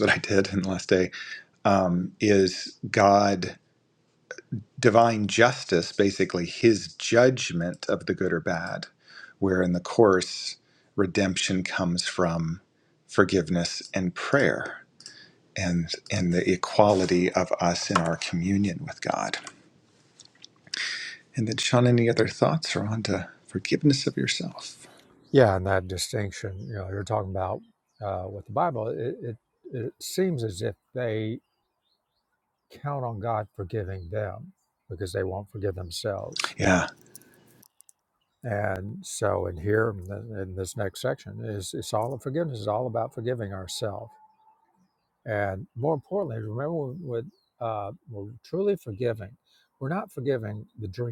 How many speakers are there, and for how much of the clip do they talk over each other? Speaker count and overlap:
2, no overlap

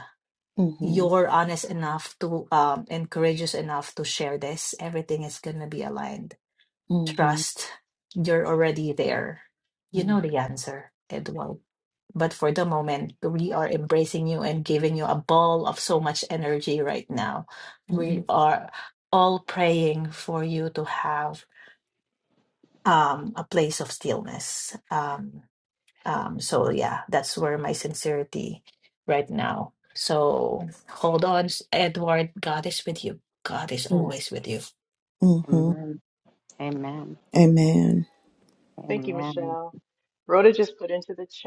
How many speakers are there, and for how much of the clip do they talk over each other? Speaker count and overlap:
4, about 5%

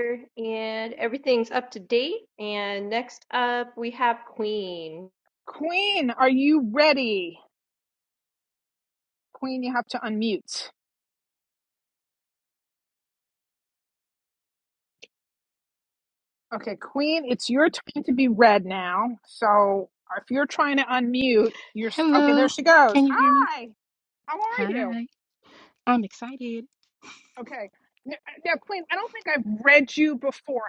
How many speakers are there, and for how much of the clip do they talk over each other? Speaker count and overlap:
3, about 6%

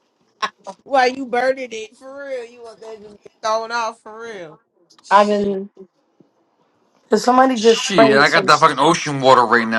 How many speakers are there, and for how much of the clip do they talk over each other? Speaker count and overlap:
3, about 12%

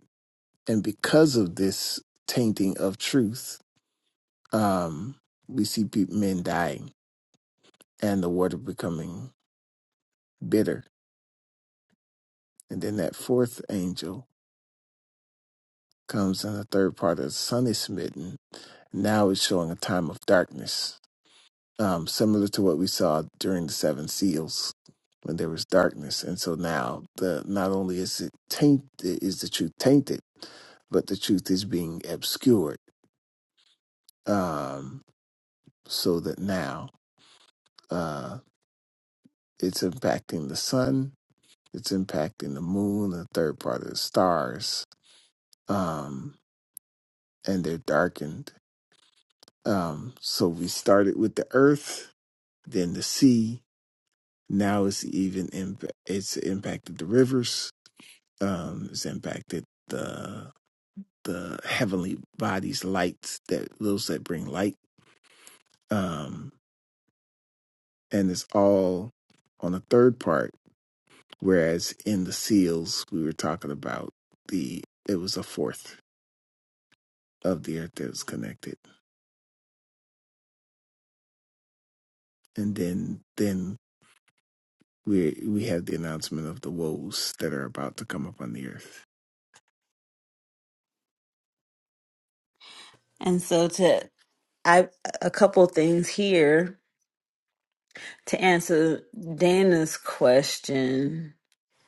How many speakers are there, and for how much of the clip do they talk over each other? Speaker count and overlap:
2, no overlap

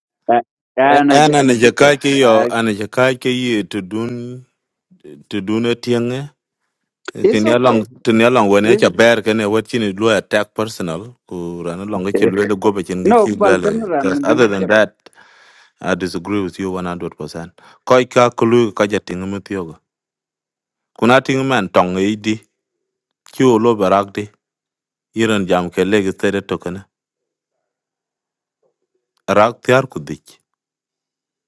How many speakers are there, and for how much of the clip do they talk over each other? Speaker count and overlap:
2, about 9%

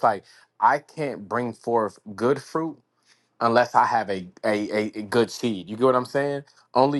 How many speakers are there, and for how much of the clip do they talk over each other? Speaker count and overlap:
1, no overlap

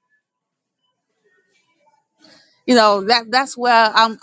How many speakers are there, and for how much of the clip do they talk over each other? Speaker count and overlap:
1, no overlap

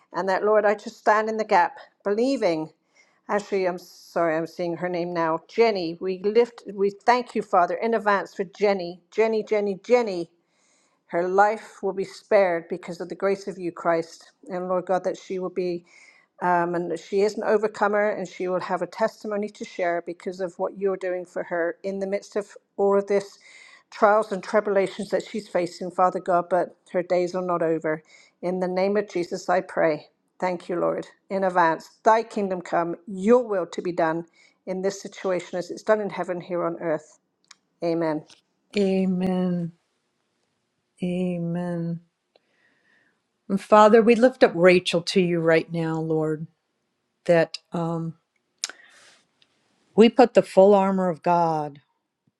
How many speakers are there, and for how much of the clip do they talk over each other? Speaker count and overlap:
2, no overlap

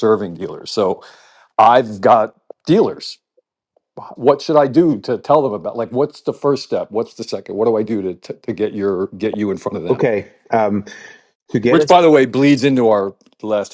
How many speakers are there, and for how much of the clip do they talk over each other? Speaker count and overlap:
2, about 2%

